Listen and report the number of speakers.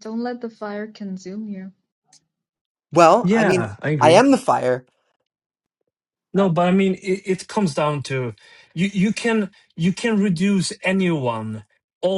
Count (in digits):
3